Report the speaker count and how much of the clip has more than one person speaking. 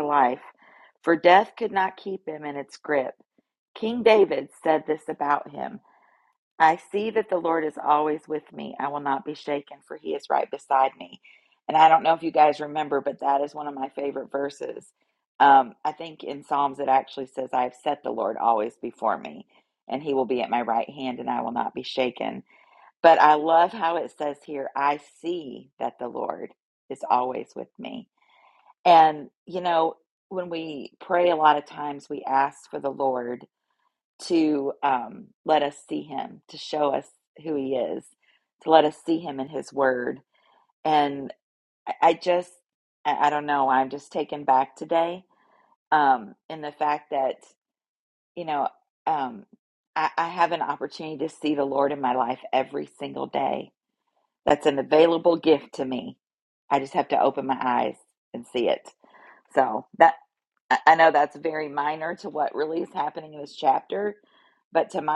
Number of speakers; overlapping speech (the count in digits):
1, no overlap